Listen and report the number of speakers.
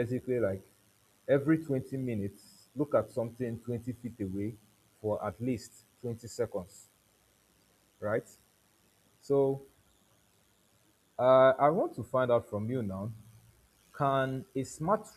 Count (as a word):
one